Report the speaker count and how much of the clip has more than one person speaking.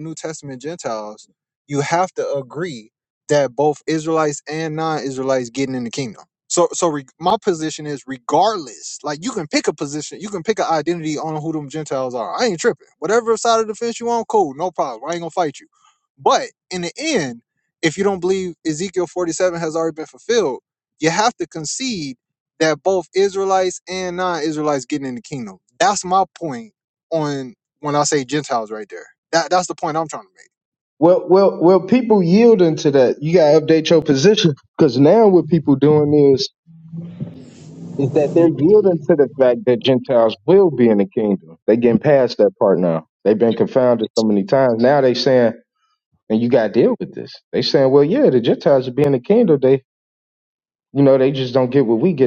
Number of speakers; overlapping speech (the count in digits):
2, no overlap